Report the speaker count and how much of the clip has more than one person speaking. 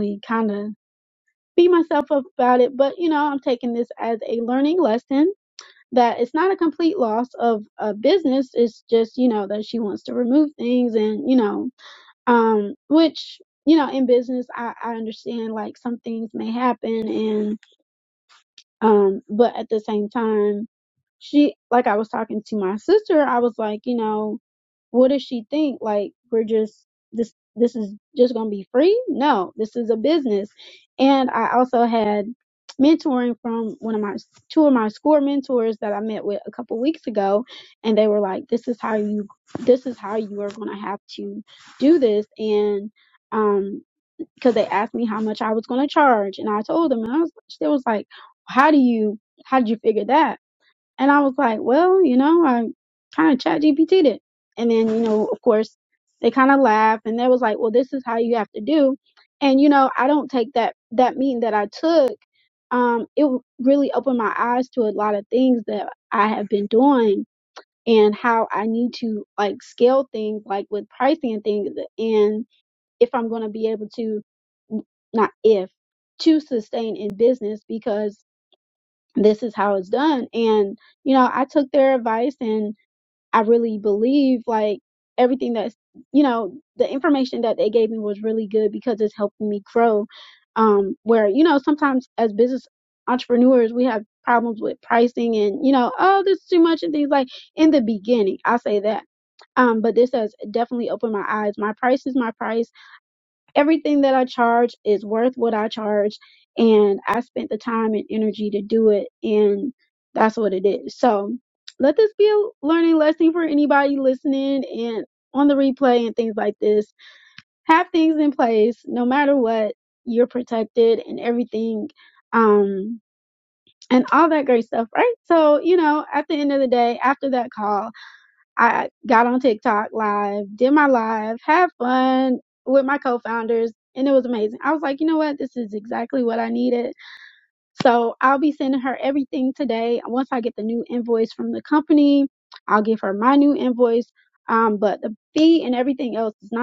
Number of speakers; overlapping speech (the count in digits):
1, no overlap